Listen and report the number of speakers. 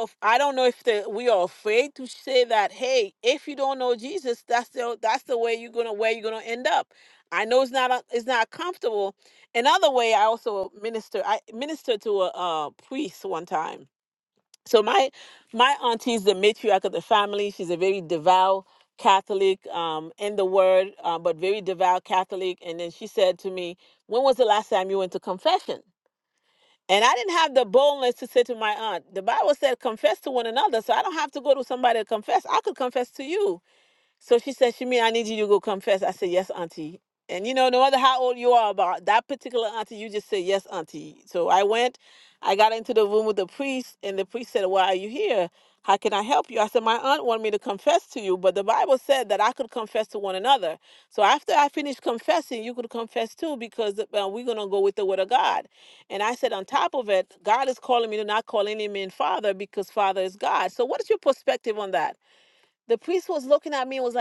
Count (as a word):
one